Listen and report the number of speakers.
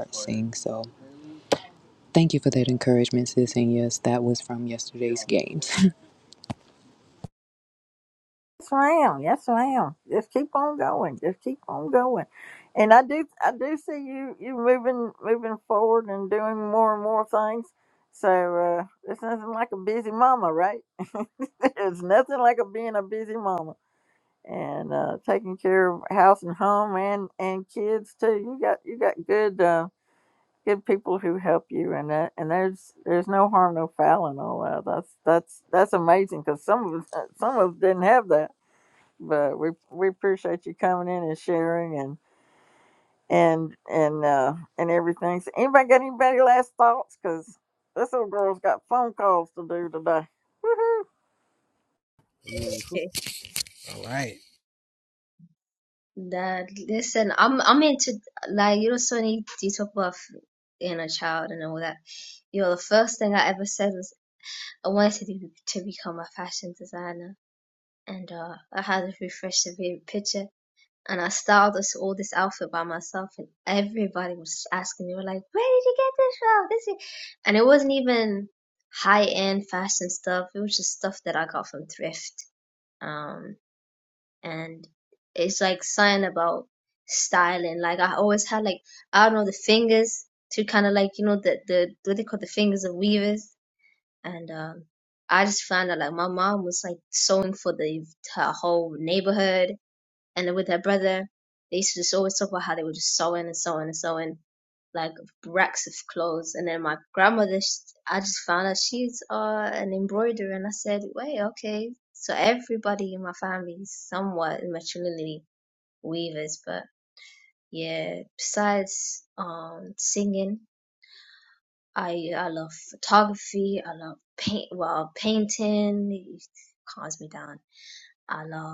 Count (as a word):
four